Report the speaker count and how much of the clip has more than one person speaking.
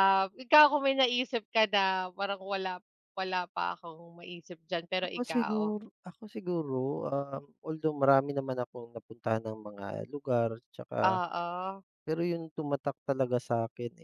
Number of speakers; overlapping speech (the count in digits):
2, about 6%